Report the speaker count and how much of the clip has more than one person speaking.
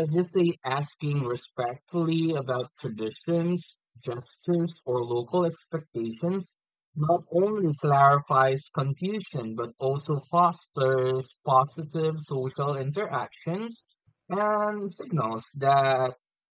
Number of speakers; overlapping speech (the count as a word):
one, no overlap